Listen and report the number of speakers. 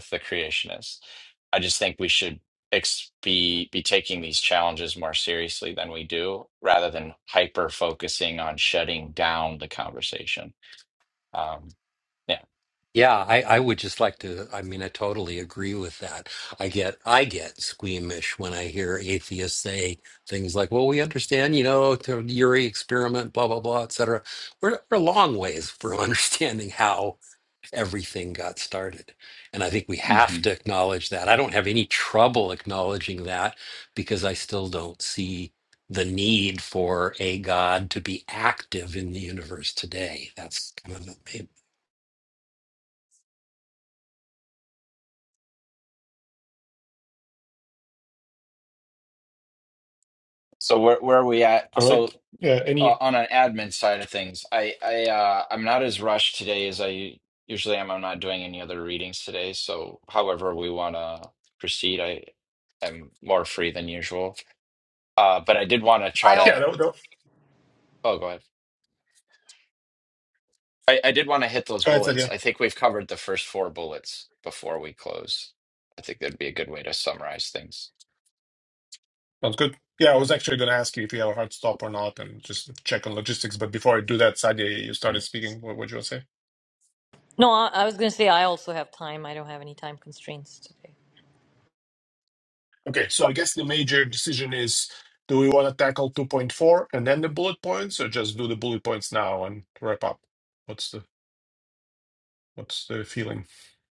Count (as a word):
four